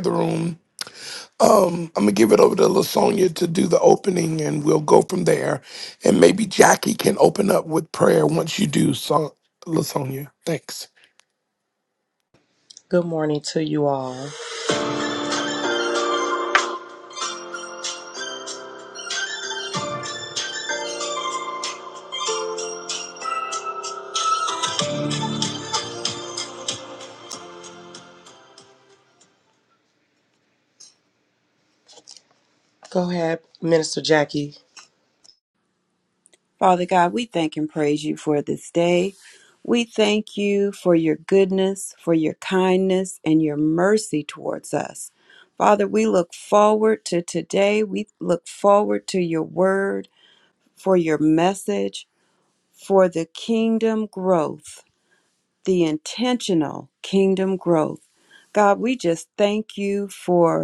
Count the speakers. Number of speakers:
3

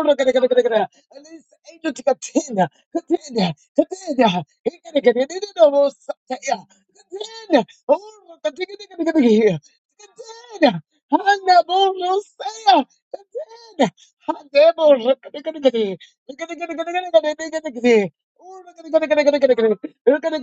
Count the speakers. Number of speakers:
1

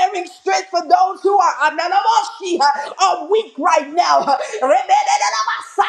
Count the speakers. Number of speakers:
1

